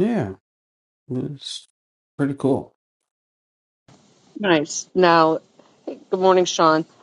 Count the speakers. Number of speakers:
two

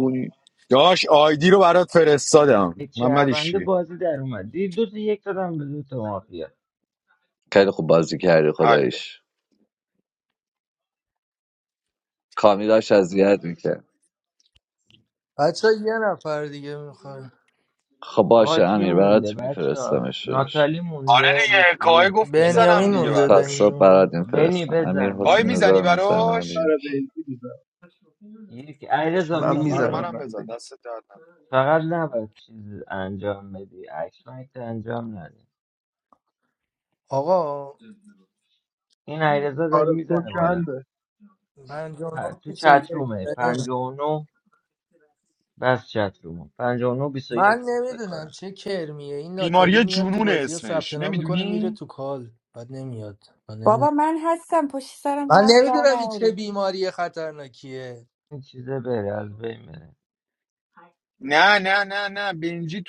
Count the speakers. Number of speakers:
six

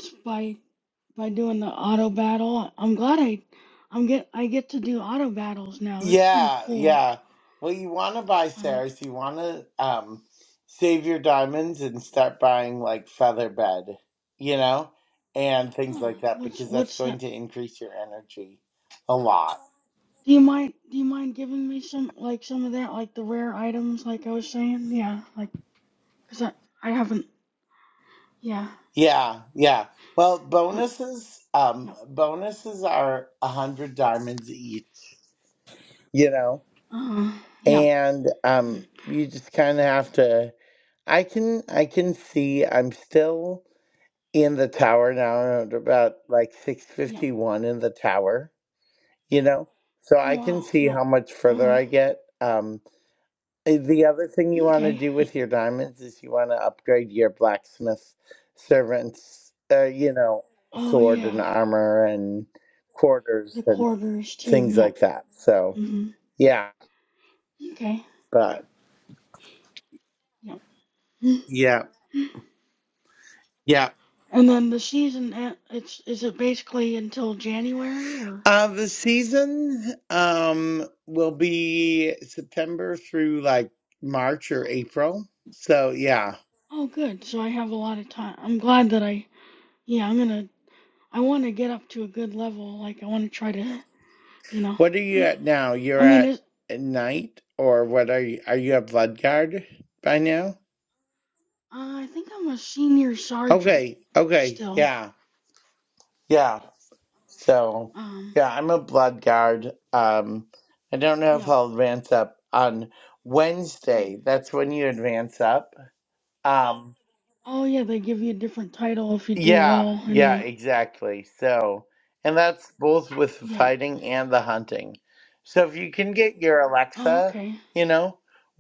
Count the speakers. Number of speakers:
two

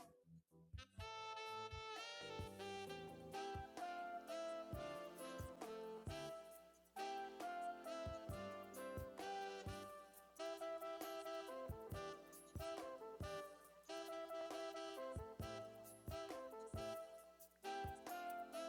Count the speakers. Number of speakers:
zero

